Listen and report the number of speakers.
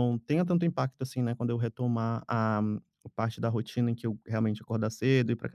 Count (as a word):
one